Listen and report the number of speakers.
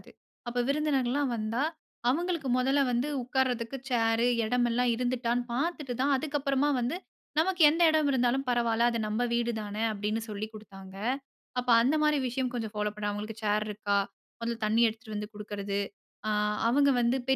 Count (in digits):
1